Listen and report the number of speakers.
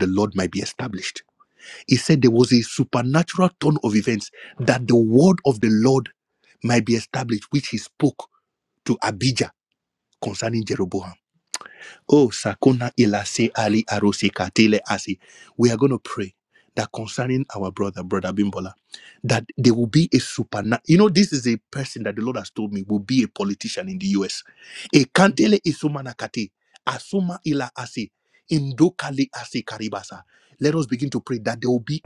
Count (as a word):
one